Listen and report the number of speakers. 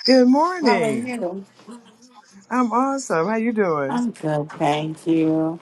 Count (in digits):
2